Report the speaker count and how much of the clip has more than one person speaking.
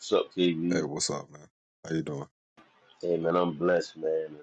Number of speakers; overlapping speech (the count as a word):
two, about 4%